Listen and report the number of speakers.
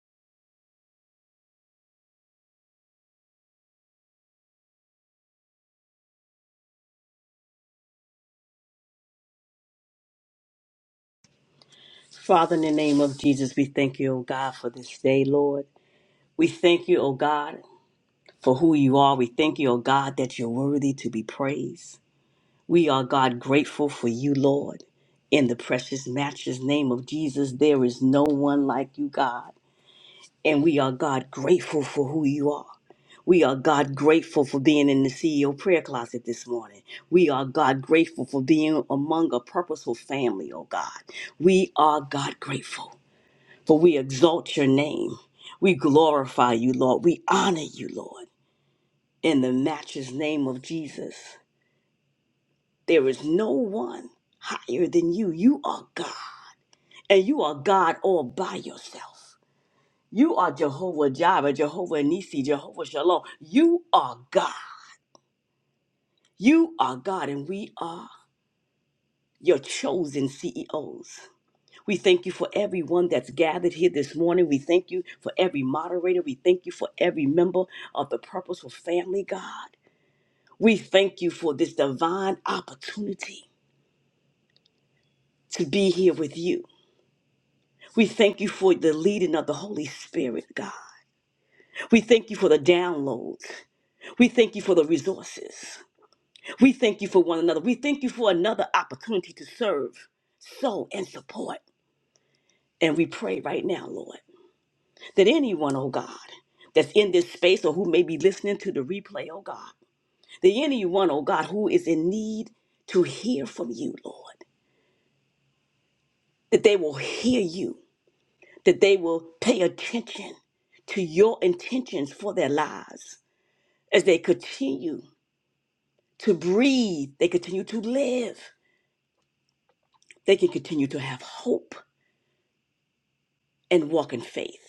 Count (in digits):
1